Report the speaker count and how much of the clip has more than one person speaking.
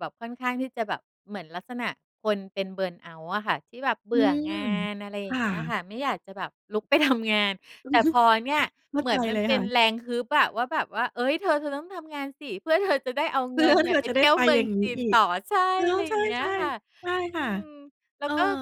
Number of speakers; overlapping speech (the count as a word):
two, about 24%